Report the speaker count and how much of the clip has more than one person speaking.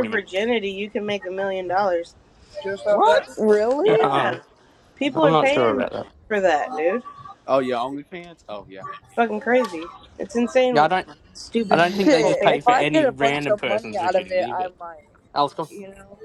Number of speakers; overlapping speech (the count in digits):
4, about 28%